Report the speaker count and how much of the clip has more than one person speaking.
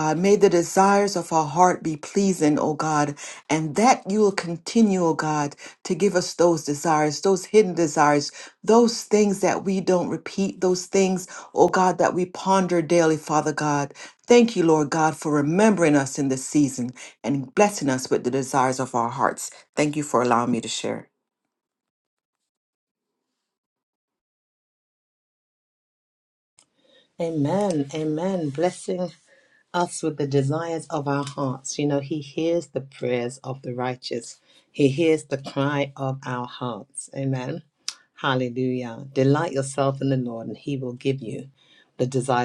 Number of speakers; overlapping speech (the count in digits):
2, no overlap